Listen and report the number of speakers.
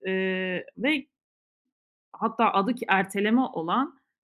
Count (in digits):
1